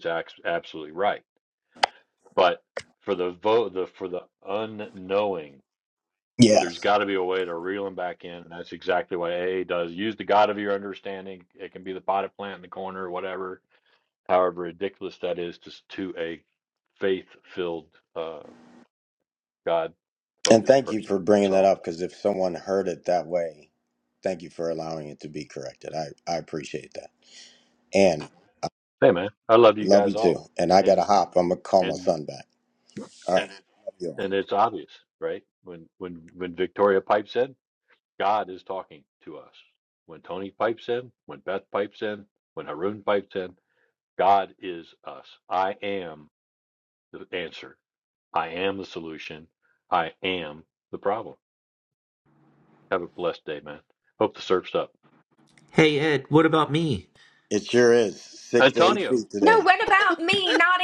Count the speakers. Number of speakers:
4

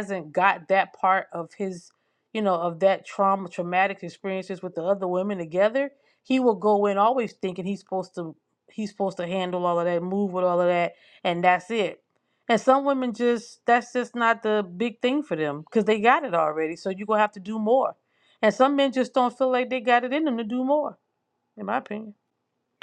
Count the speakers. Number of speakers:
1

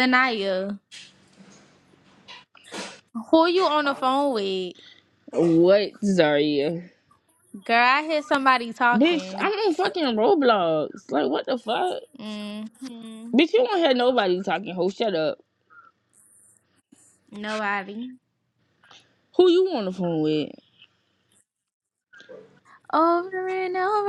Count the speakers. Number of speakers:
2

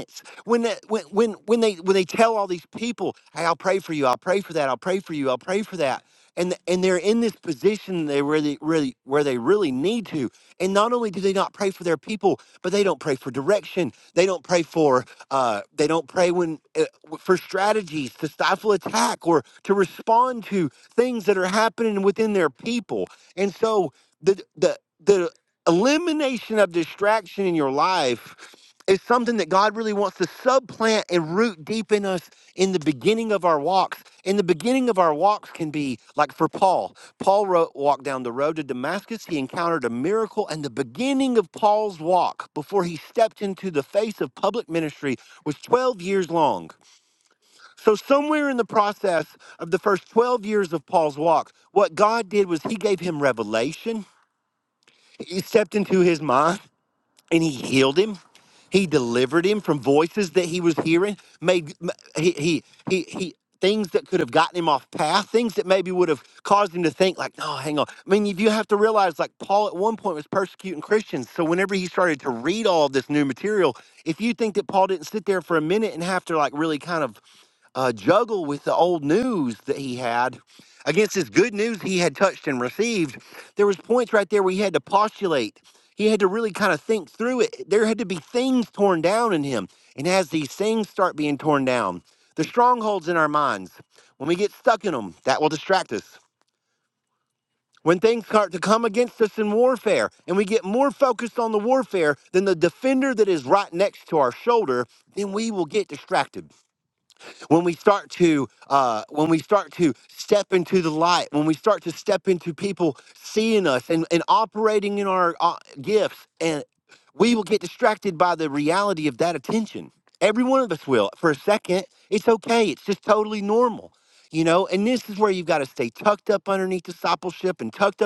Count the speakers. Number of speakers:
1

